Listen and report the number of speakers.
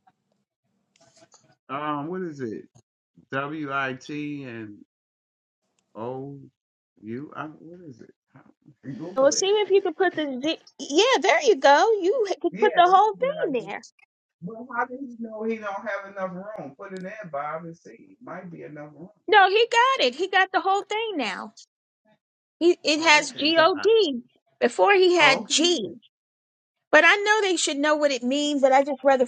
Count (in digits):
2